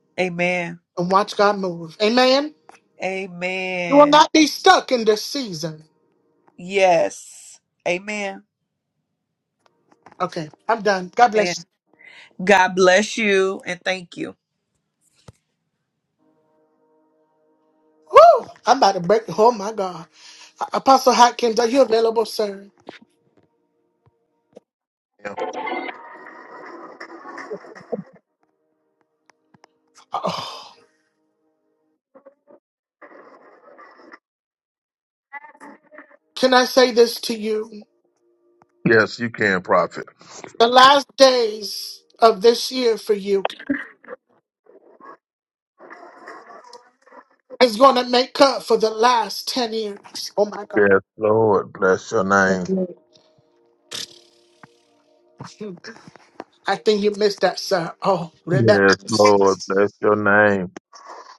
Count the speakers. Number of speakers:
3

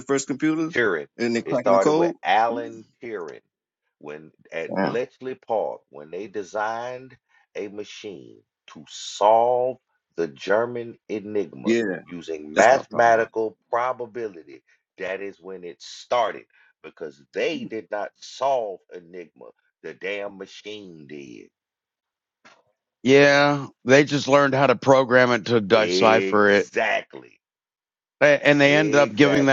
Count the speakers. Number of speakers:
3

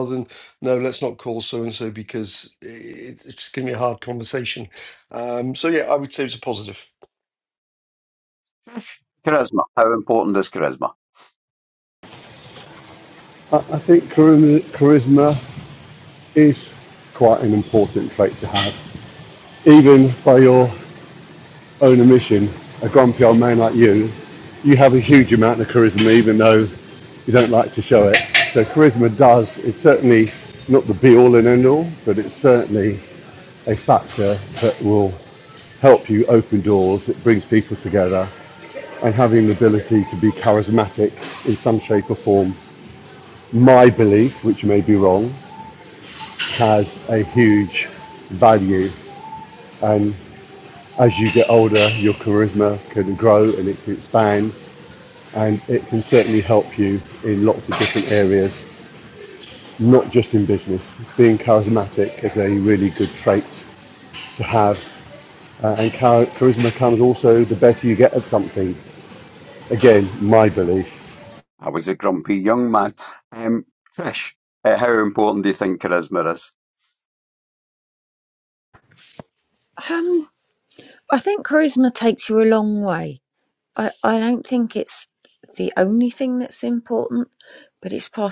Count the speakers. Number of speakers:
4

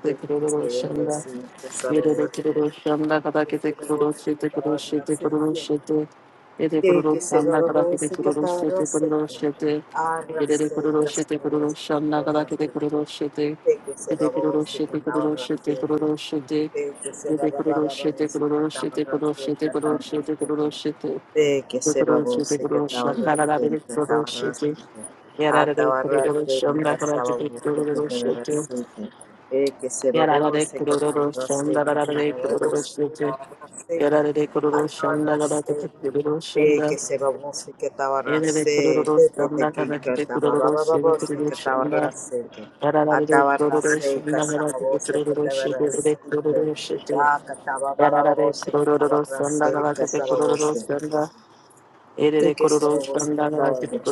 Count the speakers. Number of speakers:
2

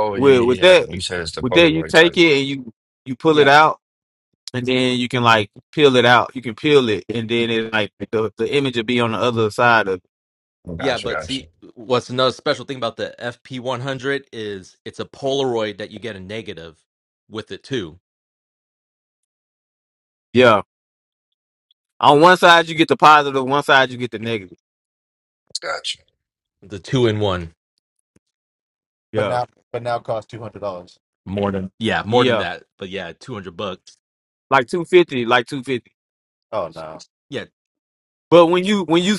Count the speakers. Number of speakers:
4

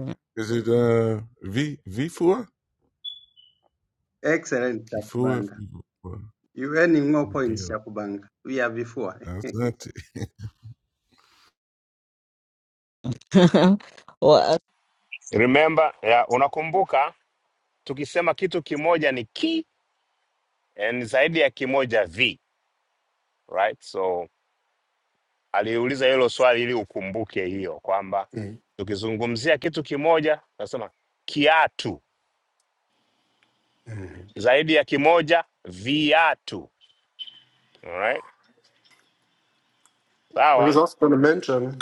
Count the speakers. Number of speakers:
5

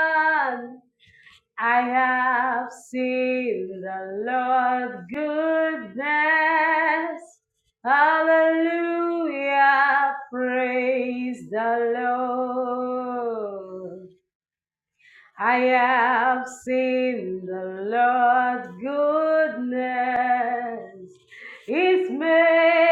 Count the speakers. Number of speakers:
1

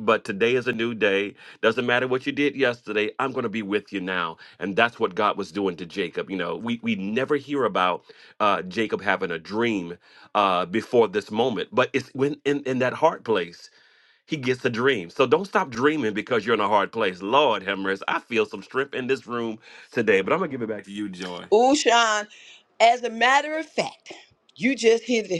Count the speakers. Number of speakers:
2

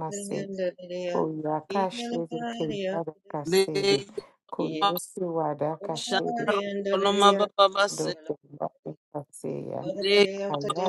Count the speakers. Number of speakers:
3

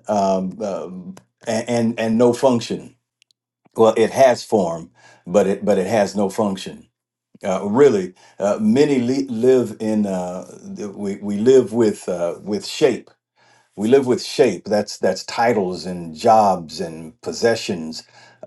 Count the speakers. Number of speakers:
1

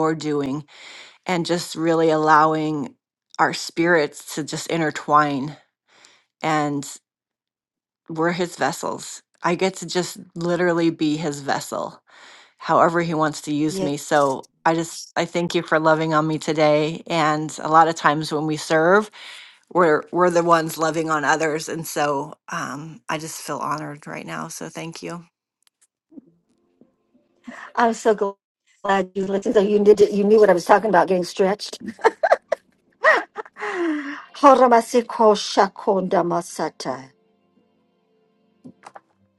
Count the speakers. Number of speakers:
2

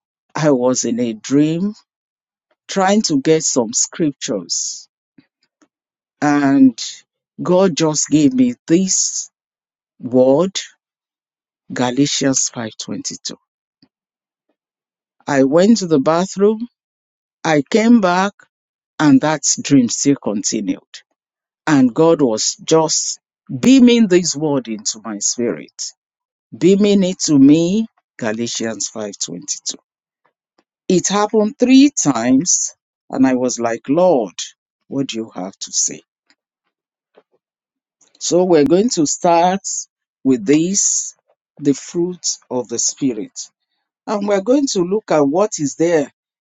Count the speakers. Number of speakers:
1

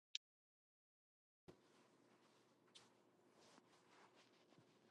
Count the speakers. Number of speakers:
0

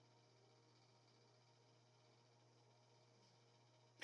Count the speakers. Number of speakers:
0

